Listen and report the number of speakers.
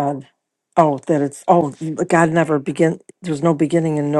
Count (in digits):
1